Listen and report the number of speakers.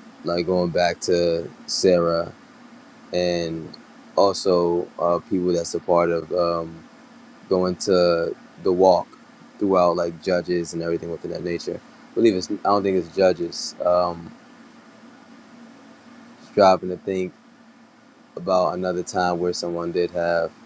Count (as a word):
one